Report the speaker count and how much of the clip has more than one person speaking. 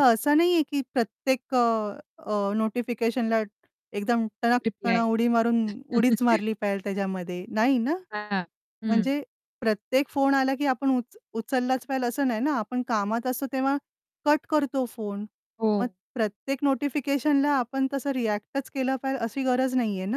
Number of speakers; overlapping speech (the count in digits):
2, about 4%